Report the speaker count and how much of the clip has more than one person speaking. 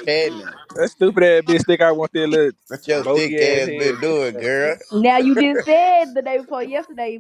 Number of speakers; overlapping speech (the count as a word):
three, about 20%